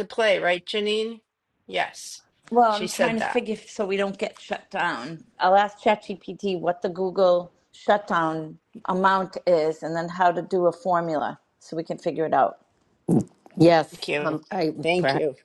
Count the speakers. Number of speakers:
3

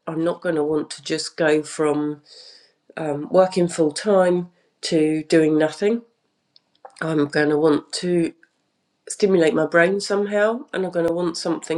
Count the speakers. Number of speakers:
1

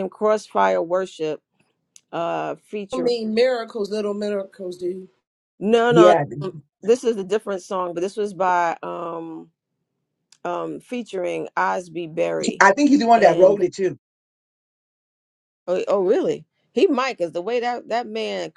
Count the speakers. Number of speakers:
3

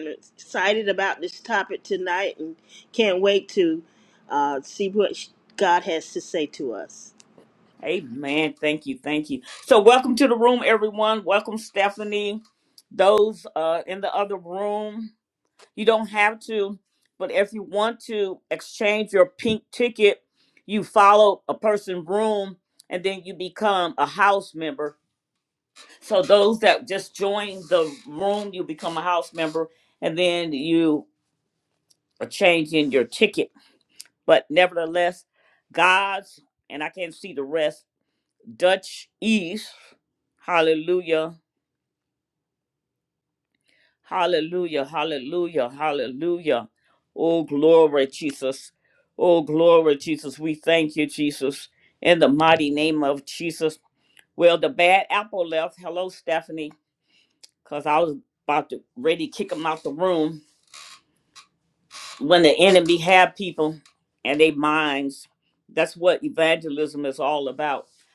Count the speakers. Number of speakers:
2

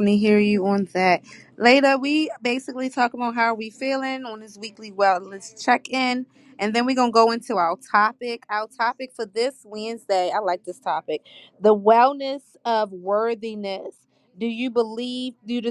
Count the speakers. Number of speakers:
1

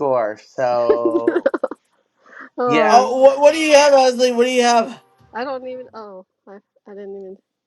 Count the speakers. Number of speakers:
3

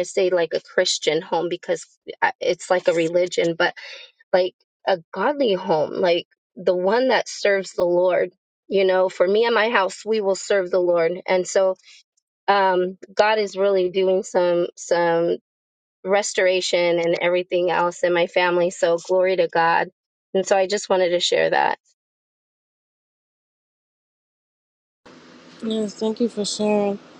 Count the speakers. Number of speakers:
2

